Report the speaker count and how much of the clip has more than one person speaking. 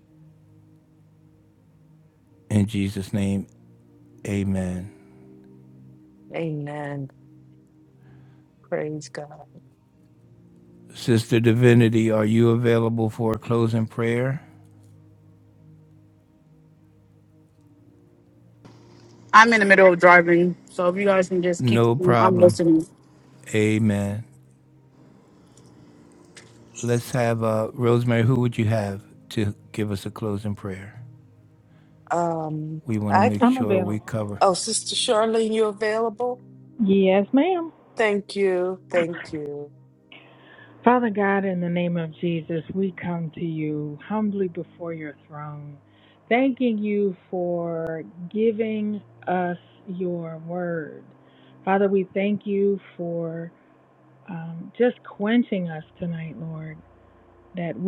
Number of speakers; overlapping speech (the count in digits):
4, about 4%